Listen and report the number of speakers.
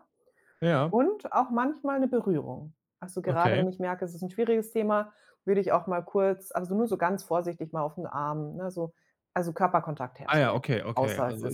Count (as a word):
two